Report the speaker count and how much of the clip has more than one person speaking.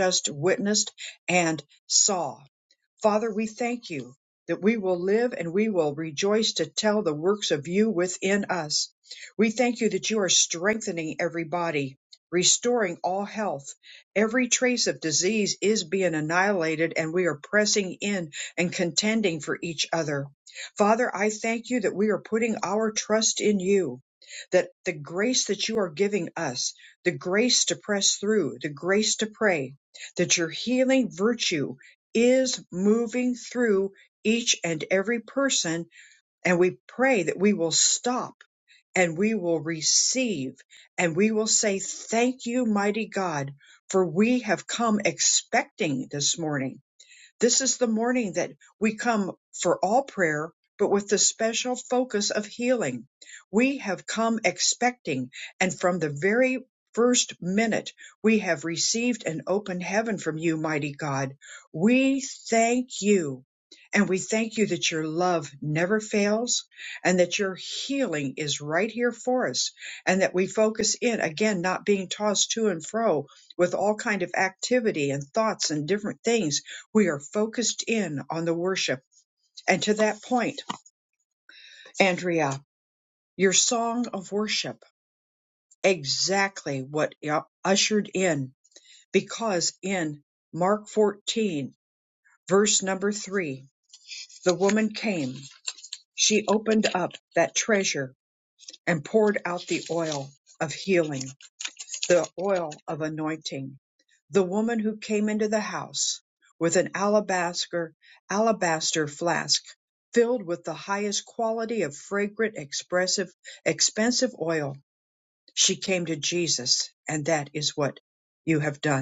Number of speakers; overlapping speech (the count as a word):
one, no overlap